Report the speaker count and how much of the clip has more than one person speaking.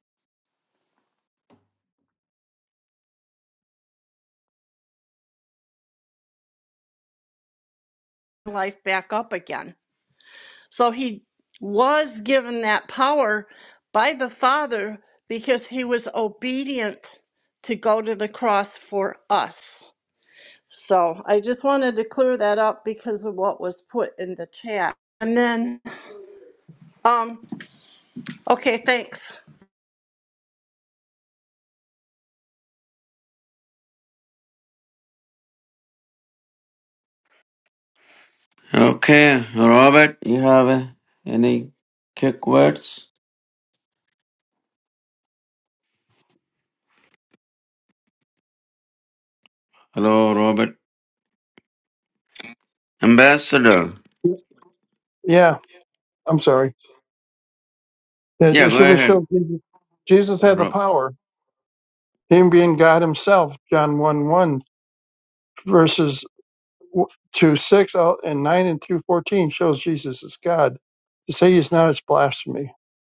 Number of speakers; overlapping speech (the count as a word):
three, about 1%